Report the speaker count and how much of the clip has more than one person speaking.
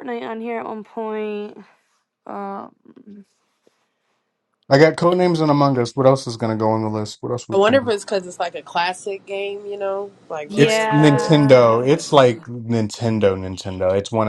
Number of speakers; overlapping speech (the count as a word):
three, about 14%